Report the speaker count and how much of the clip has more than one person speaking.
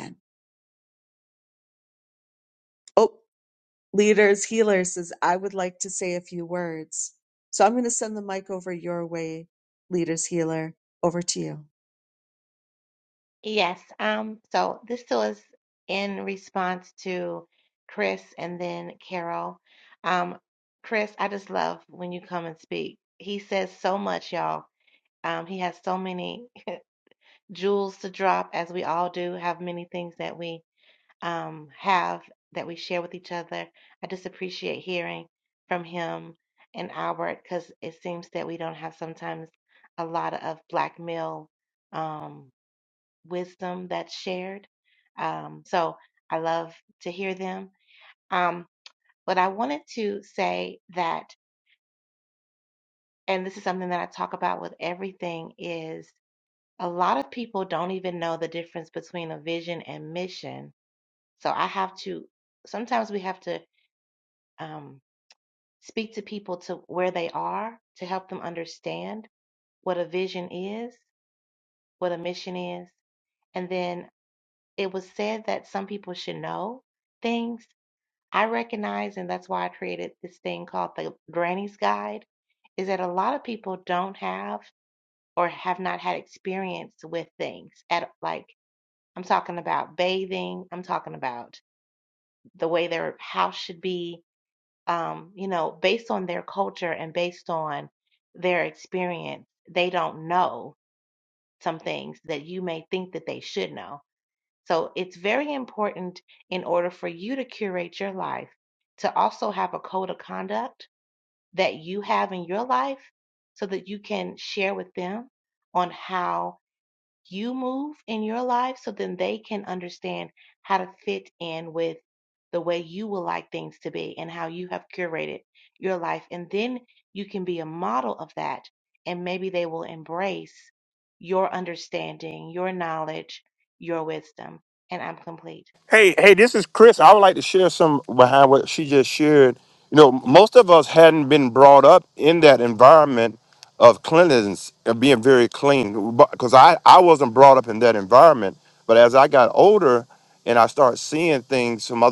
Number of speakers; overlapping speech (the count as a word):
three, no overlap